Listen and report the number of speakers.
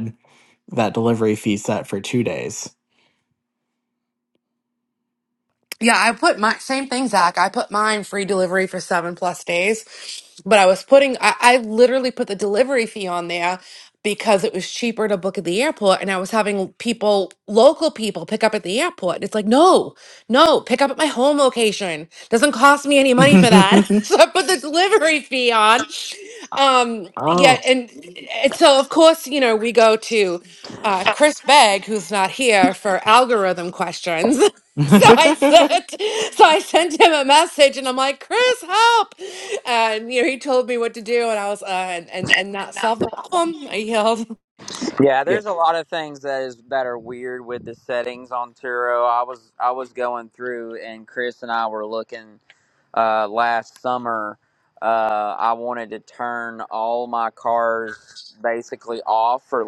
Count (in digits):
3